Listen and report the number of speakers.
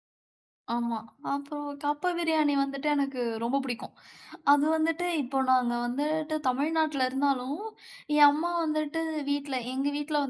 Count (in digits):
1